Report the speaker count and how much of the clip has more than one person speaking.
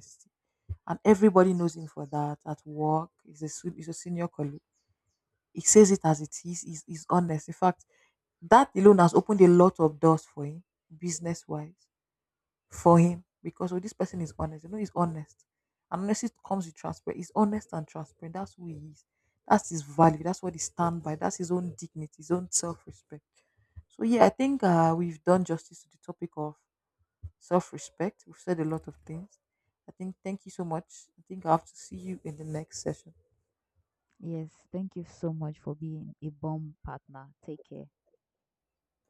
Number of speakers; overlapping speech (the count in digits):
2, no overlap